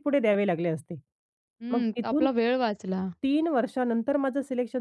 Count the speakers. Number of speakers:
2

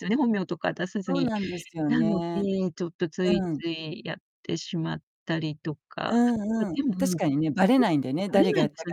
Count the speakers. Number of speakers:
2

